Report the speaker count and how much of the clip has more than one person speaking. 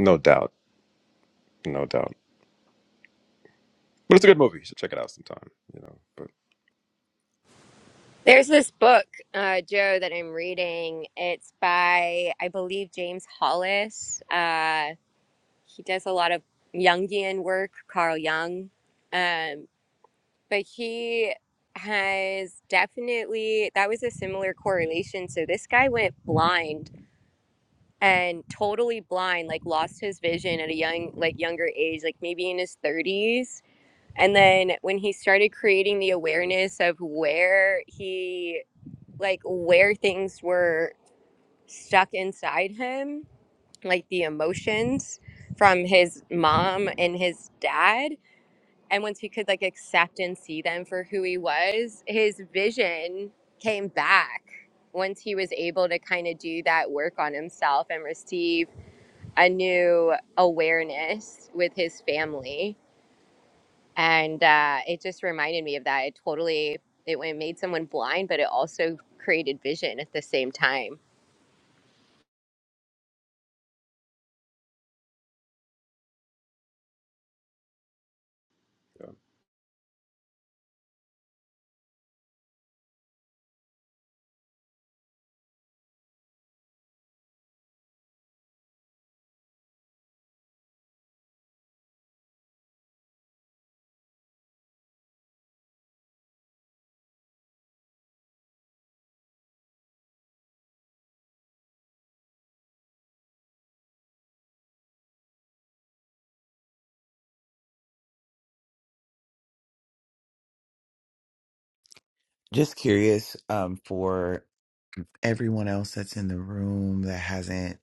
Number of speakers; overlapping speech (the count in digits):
3, no overlap